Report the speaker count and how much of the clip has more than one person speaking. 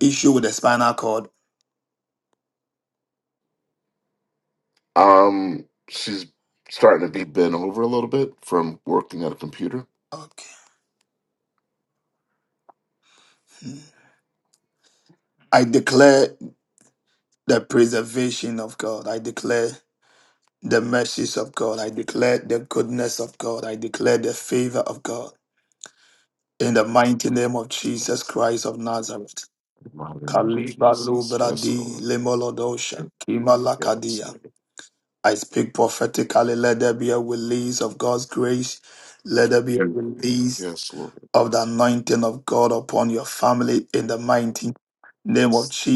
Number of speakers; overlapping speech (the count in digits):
2, about 5%